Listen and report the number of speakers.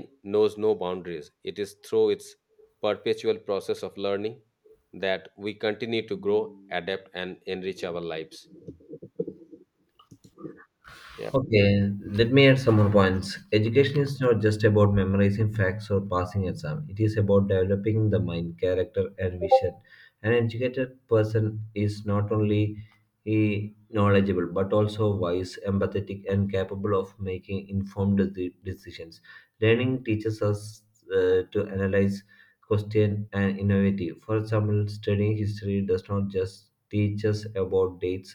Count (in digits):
2